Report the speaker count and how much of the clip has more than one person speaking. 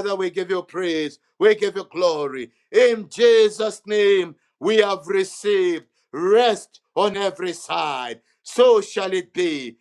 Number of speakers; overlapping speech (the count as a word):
one, no overlap